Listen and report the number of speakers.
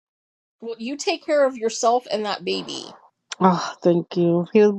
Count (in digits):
2